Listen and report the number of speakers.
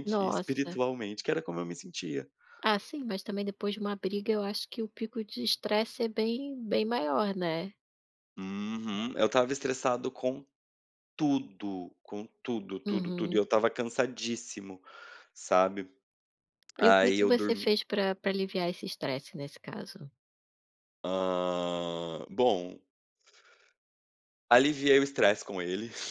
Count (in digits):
2